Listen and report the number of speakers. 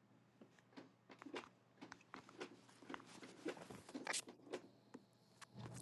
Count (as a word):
zero